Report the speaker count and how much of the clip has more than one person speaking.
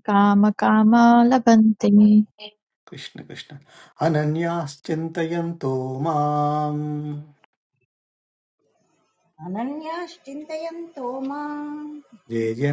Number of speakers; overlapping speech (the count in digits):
3, no overlap